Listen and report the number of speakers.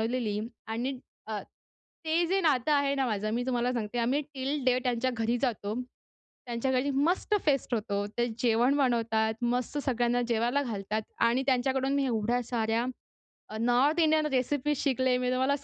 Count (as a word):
one